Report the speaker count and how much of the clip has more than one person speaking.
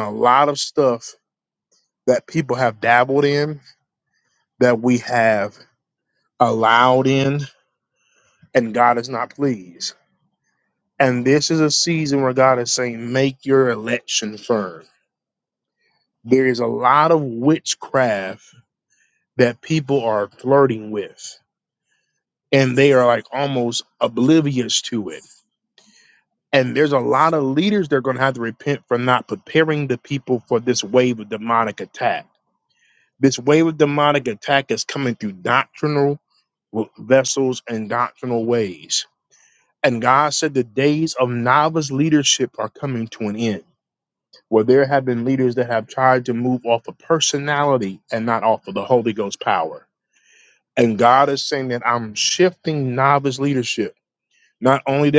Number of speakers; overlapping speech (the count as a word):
one, no overlap